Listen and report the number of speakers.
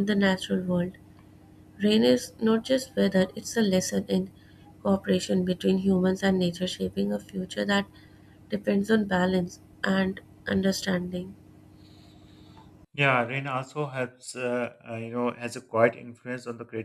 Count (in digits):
2